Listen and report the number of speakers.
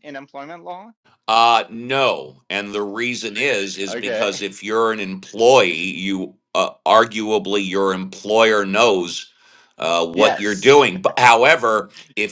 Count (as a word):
two